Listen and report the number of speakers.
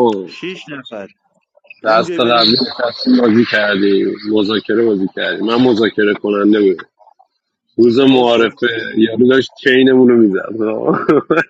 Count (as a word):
two